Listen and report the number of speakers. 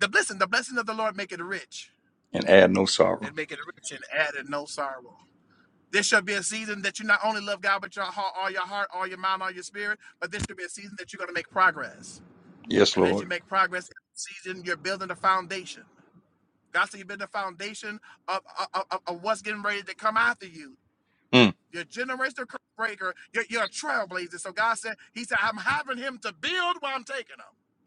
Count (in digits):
2